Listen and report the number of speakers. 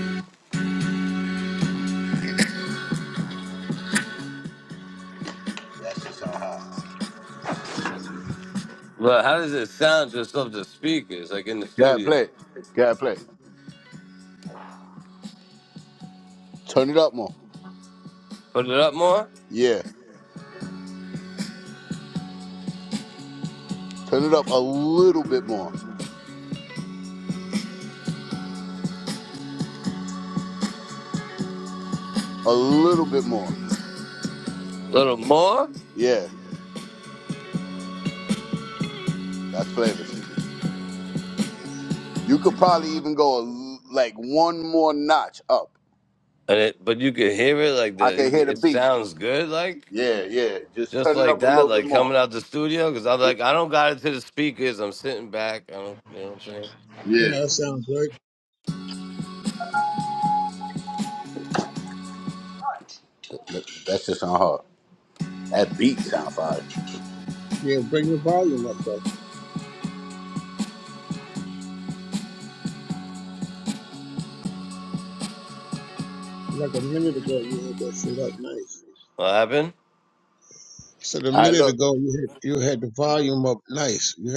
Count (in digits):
3